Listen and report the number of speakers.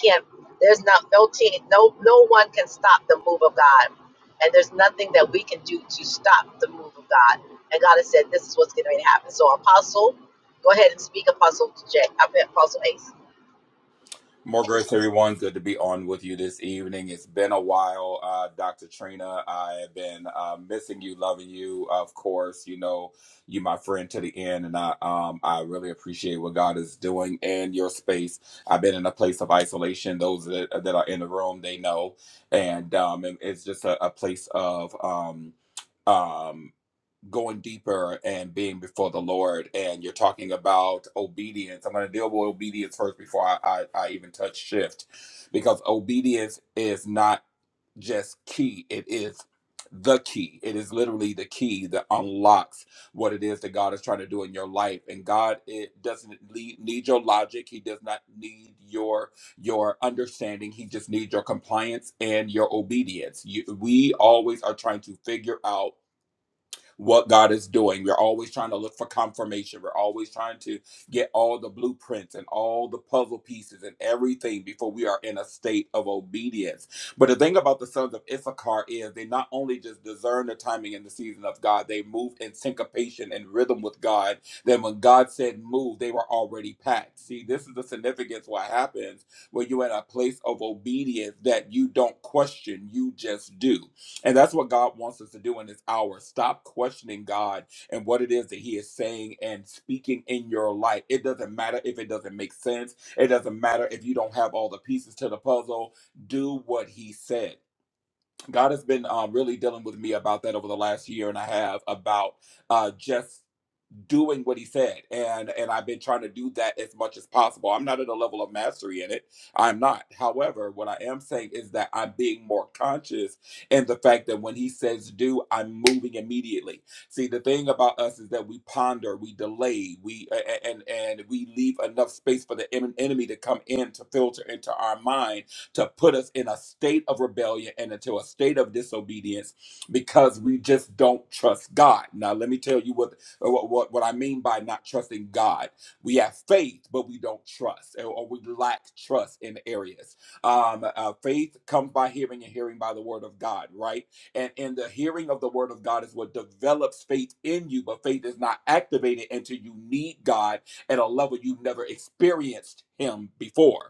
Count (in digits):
2